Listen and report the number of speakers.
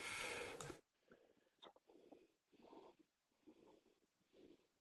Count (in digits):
0